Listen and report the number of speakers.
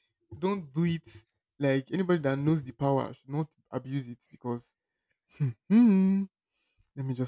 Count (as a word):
one